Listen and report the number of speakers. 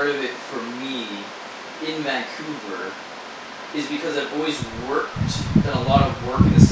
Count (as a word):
one